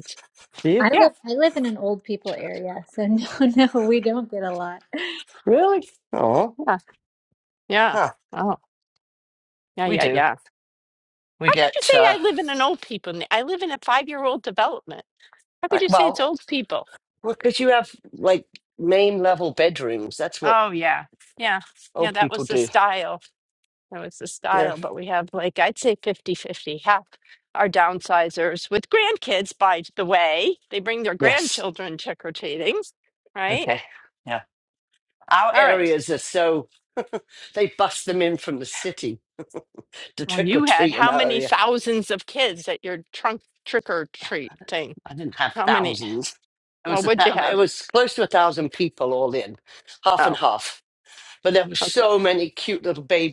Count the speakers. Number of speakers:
3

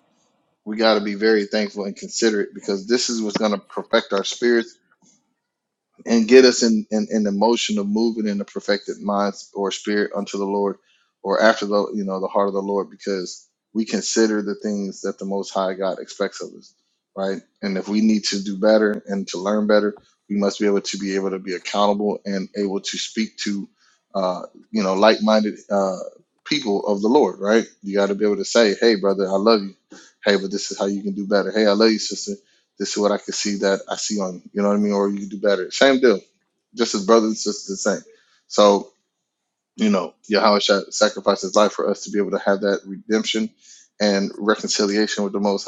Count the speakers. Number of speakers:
1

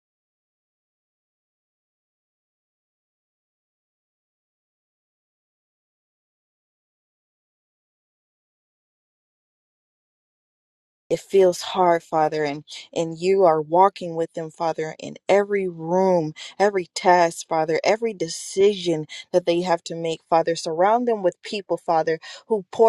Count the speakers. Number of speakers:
1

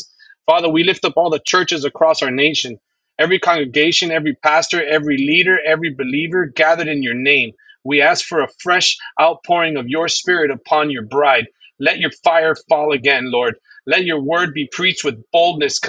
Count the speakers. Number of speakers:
1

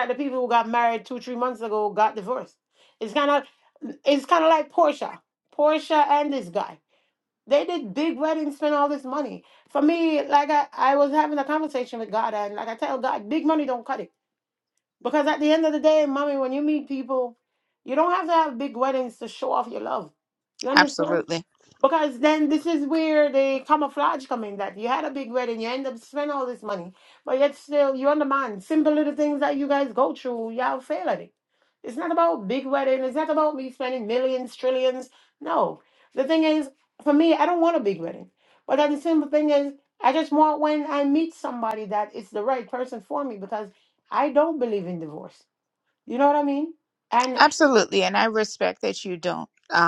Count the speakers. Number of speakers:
2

